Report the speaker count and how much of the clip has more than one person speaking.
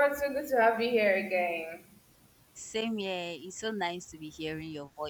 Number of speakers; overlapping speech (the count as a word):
two, no overlap